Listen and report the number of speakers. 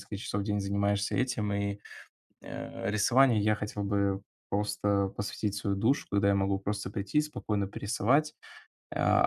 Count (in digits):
1